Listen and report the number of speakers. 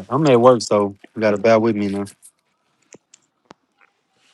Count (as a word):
one